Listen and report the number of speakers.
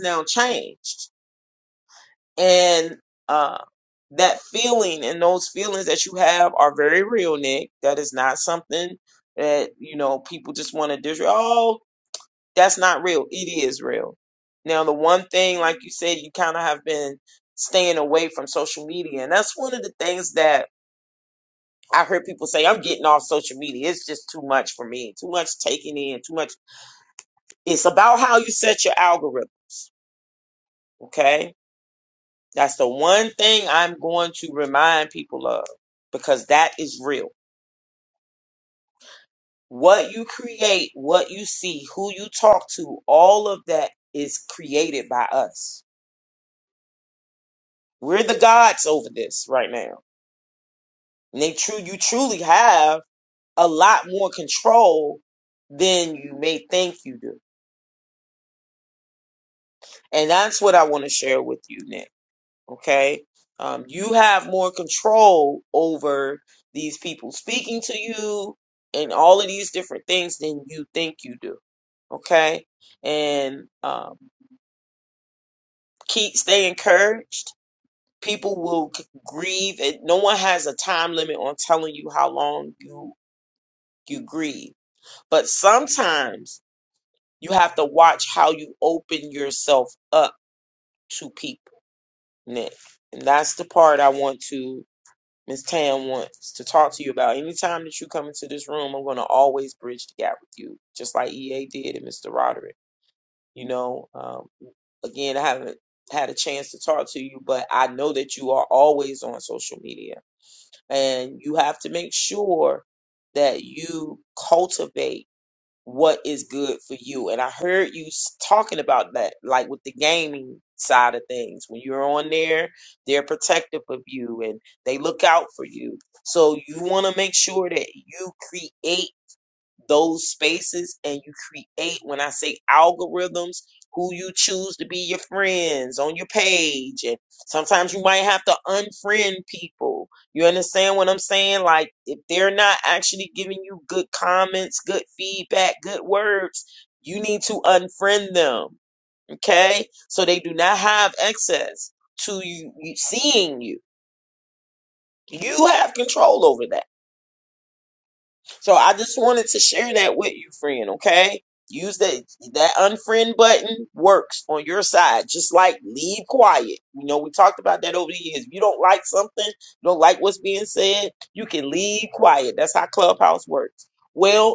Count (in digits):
1